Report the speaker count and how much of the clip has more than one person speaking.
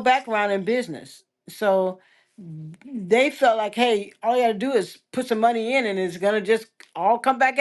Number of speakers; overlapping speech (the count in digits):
1, no overlap